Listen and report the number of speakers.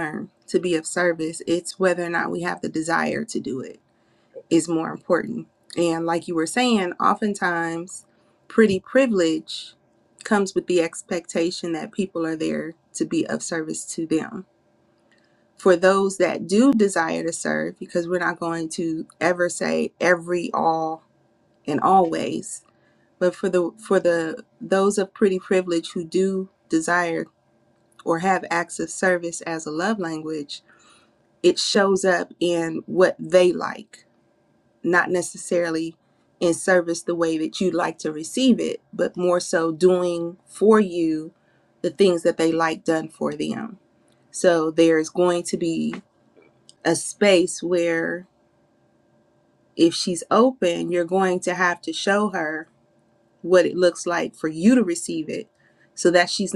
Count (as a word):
one